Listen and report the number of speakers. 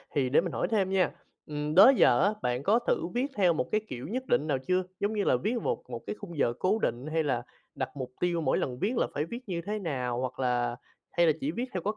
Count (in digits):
1